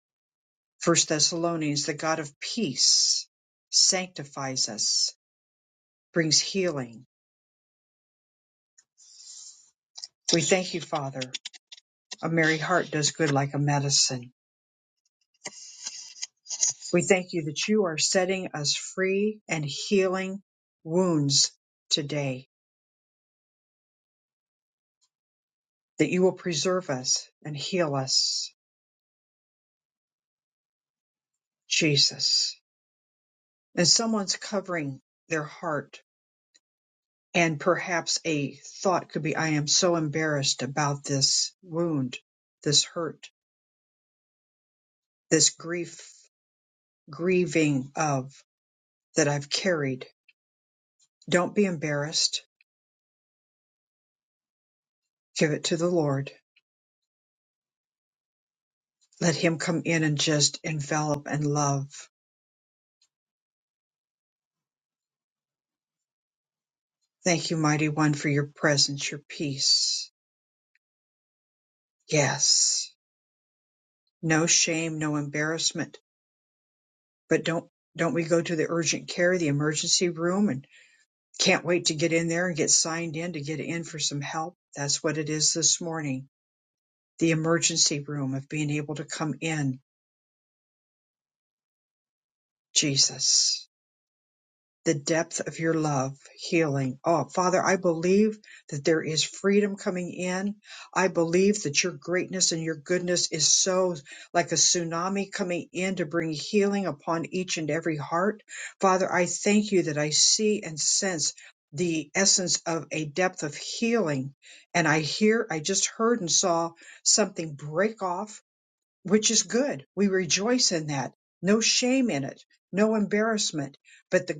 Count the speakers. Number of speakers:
1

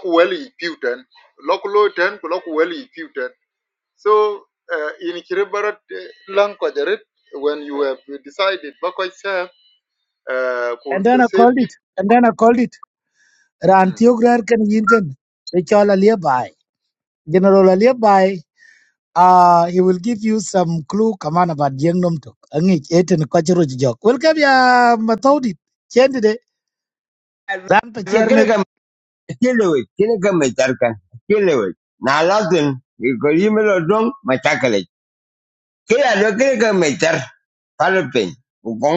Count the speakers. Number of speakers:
3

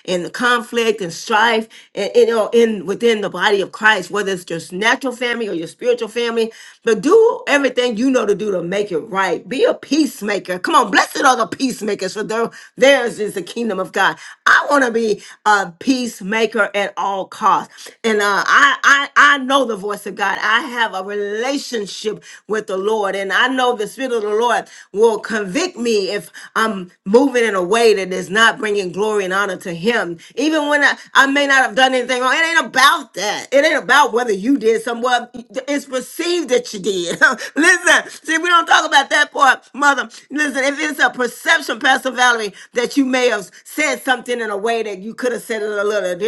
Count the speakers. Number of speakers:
1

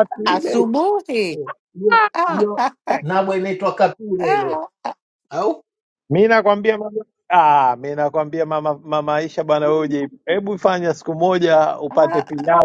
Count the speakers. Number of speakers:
3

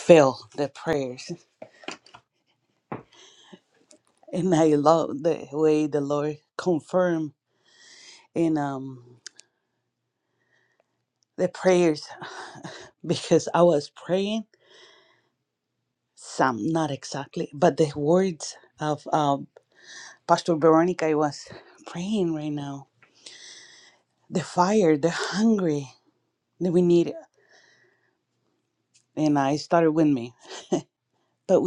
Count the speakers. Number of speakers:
1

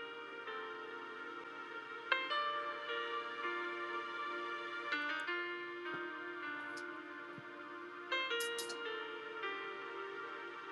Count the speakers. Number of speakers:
0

